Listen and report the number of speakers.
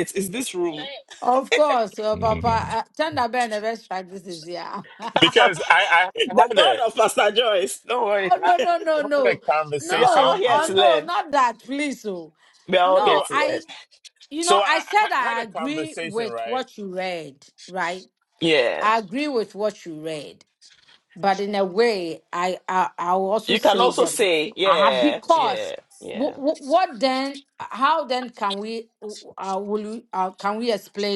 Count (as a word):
three